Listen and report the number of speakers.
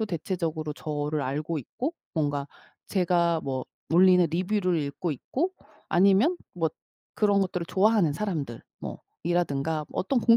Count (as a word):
one